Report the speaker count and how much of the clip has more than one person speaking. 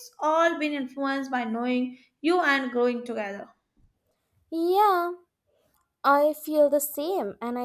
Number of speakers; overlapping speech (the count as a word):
two, no overlap